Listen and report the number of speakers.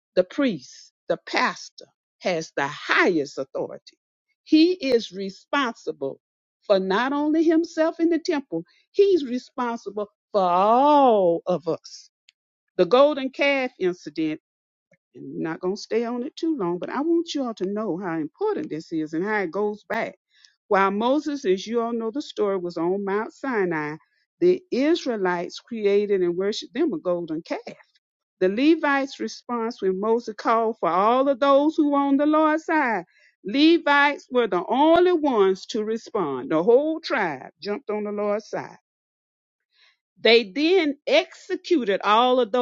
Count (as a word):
one